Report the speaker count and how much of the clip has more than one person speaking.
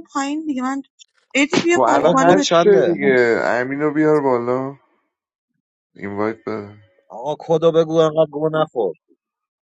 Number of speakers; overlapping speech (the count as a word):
three, about 13%